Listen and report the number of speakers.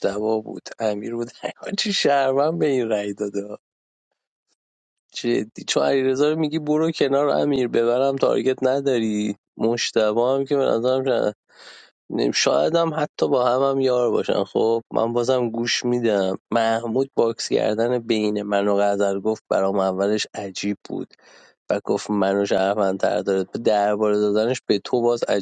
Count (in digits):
1